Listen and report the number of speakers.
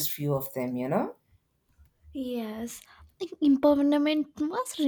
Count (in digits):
2